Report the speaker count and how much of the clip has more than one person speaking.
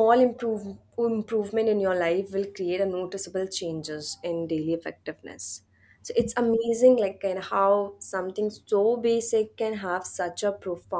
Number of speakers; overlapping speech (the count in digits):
1, no overlap